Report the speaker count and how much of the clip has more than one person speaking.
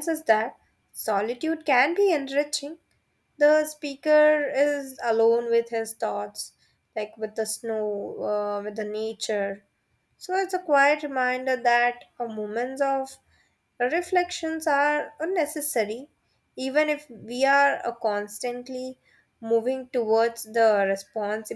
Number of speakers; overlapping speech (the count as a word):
one, no overlap